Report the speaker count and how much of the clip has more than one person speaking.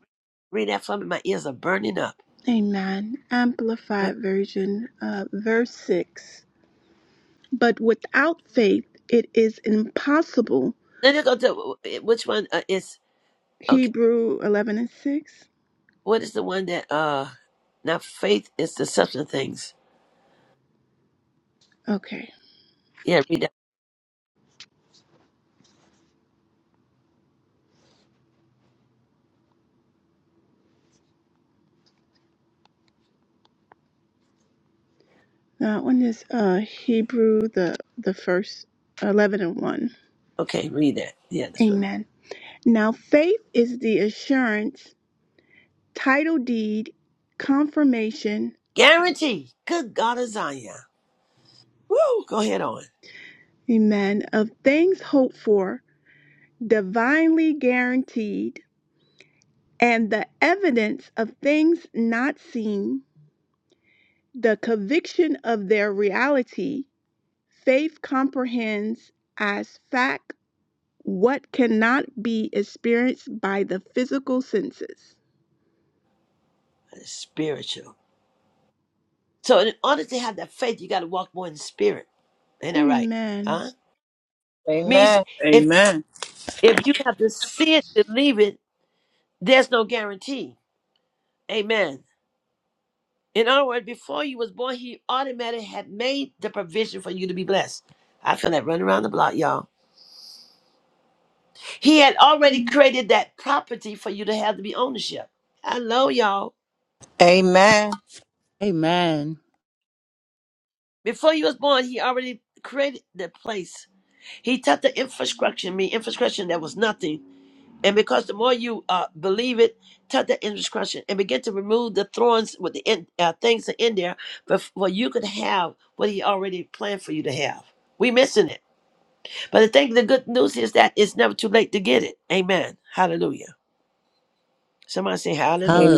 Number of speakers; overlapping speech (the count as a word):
four, about 1%